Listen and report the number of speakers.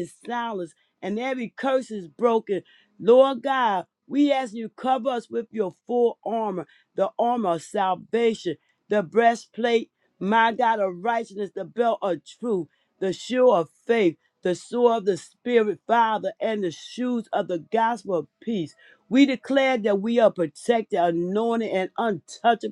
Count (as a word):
one